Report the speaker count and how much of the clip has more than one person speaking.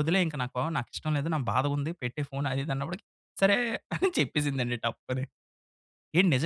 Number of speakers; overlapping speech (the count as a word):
one, no overlap